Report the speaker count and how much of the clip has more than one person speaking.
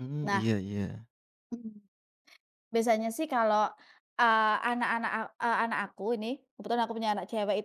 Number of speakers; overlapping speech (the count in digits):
2, about 3%